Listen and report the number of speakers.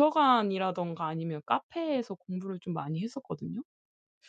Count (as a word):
one